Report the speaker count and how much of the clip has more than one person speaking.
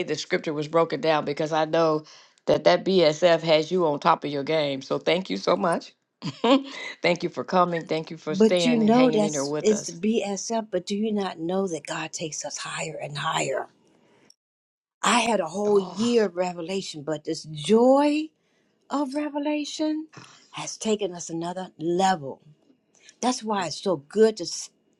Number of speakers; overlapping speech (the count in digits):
2, about 8%